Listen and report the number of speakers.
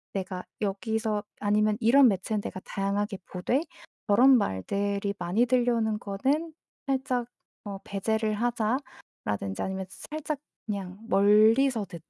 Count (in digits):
1